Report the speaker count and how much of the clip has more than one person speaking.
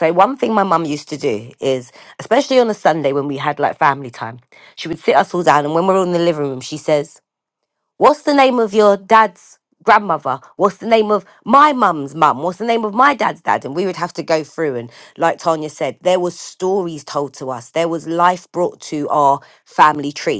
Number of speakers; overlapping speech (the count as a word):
one, no overlap